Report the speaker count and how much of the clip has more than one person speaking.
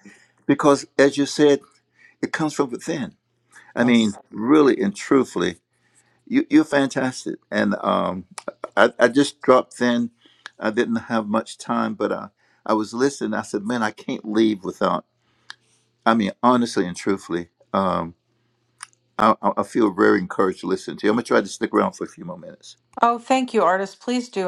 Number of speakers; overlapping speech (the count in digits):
2, about 1%